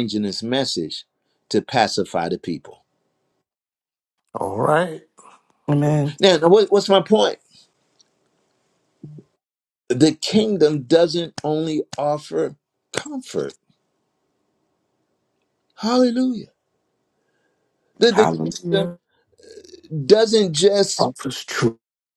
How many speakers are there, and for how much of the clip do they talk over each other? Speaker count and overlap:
three, about 2%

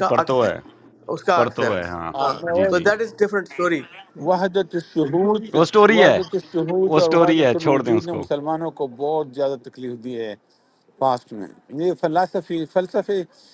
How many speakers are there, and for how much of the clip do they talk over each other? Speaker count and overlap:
three, about 24%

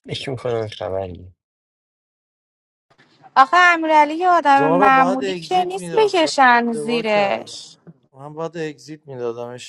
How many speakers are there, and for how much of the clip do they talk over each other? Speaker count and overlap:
three, about 26%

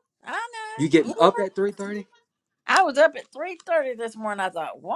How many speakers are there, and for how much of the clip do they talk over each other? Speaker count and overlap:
two, about 12%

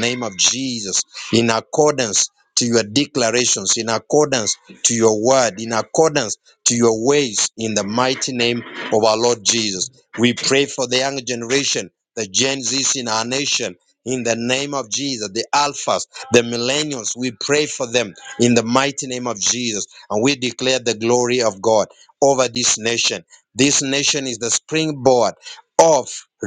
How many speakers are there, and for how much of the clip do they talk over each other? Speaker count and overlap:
one, no overlap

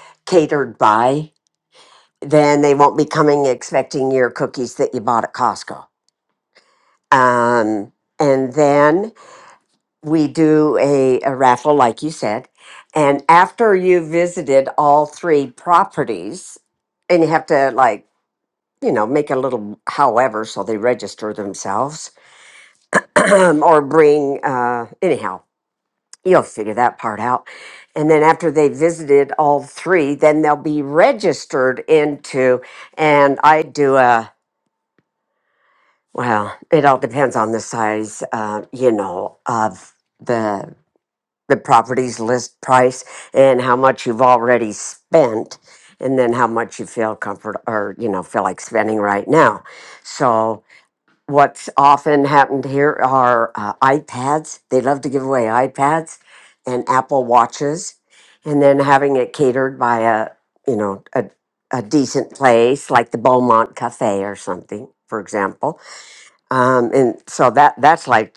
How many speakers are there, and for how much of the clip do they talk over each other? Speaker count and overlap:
one, no overlap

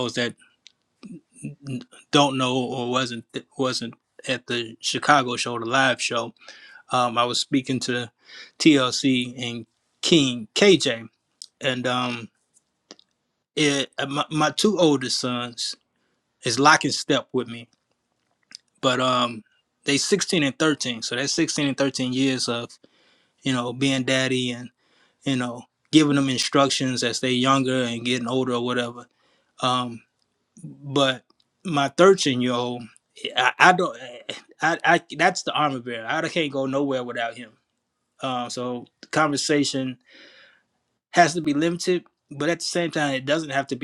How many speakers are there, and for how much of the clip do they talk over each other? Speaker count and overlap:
one, no overlap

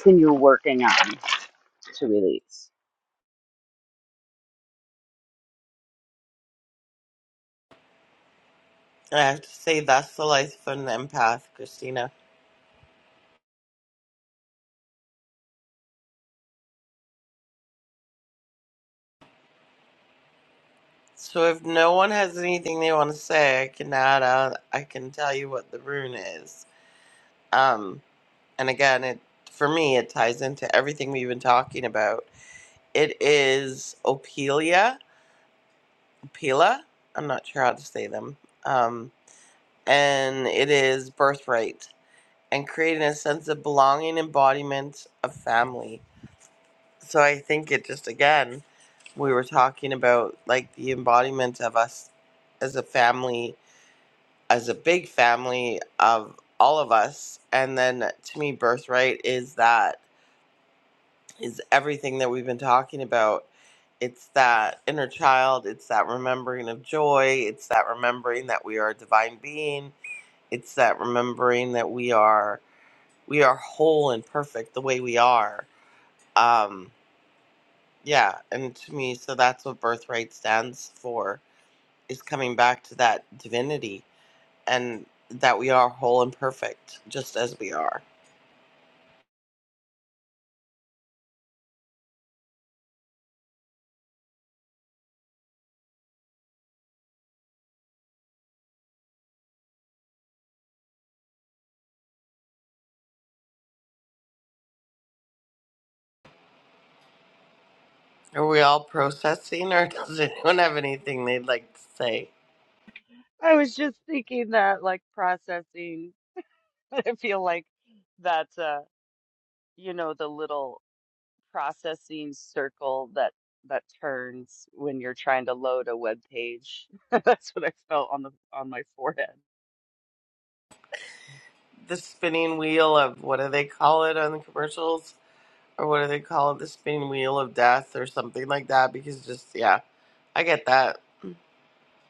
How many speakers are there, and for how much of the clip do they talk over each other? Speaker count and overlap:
three, no overlap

